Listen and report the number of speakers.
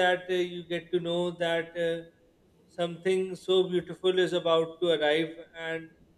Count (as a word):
one